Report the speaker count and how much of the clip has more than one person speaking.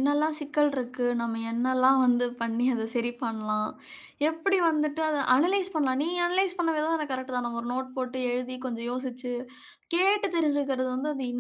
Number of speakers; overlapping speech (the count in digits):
1, no overlap